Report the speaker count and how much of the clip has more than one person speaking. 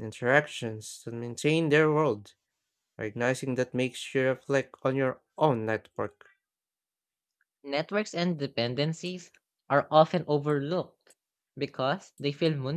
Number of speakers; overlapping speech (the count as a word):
two, no overlap